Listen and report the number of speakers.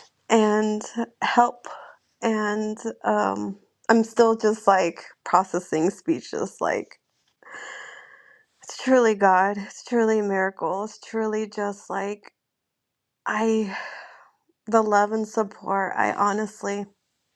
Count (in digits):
1